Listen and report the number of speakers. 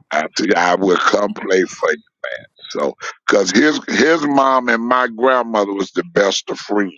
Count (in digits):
1